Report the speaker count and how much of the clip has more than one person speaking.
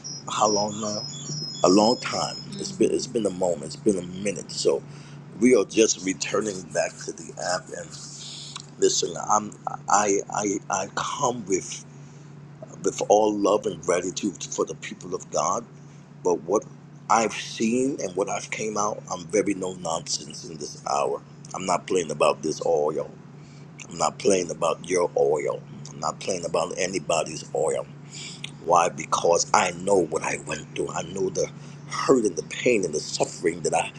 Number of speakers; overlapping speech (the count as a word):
one, no overlap